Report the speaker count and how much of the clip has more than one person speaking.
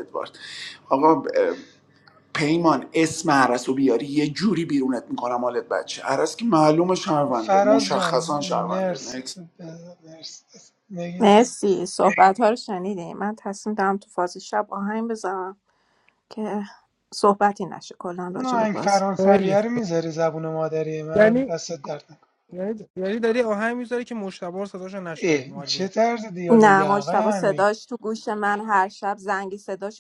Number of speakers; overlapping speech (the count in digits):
4, about 17%